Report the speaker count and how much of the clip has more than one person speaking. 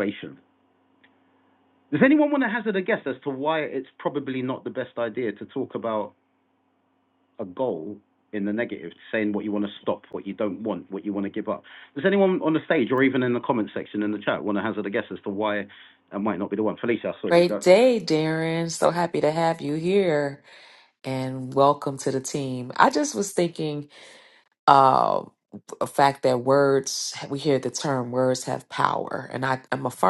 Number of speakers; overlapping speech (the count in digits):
2, about 1%